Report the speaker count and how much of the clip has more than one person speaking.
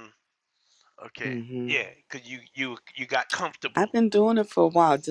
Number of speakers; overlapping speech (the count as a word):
two, about 13%